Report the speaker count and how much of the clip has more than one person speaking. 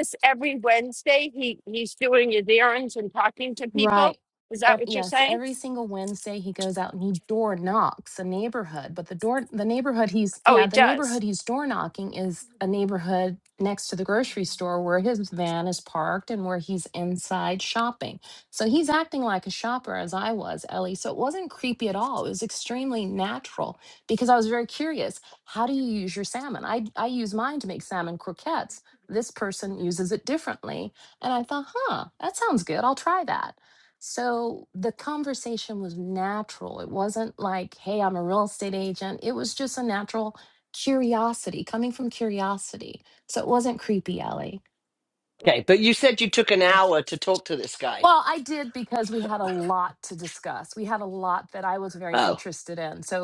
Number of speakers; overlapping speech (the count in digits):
3, about 4%